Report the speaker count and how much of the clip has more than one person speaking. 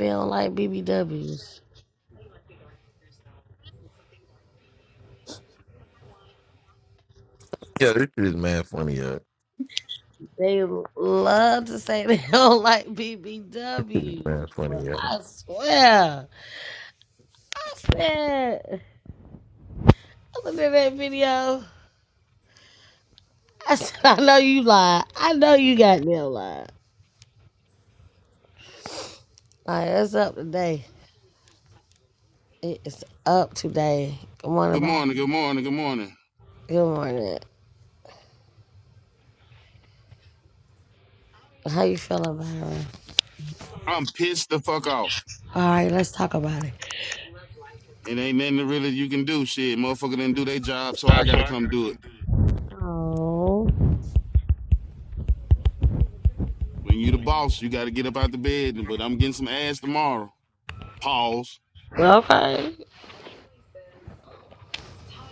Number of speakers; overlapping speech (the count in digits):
3, about 1%